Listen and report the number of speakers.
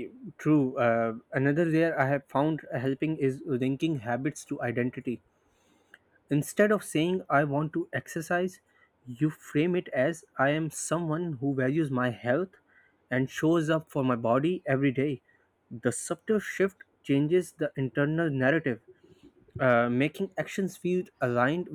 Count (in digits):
1